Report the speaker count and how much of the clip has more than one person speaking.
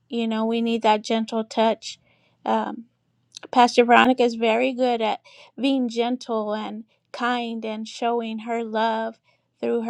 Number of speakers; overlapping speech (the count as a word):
one, no overlap